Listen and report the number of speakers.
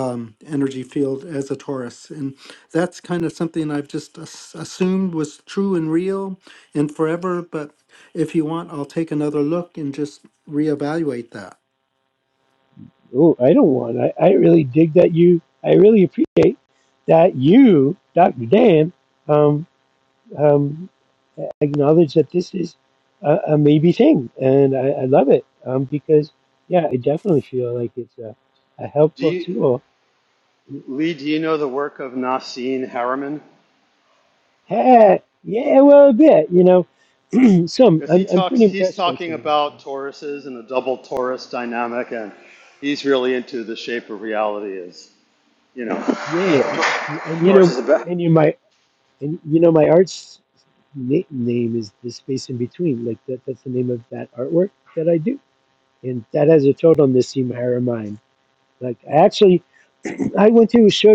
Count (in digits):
3